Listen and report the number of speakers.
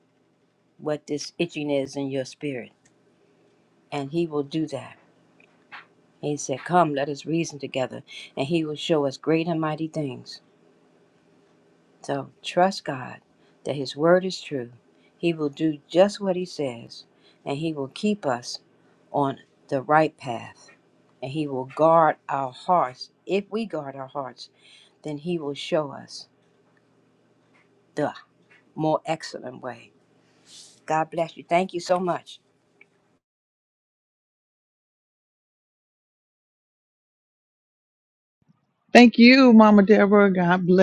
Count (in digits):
2